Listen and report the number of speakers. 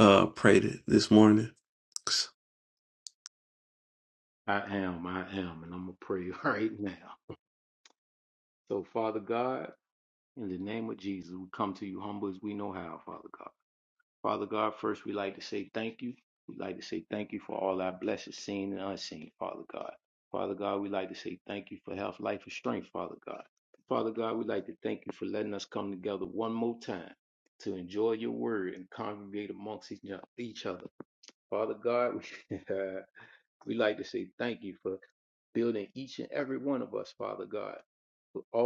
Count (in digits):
2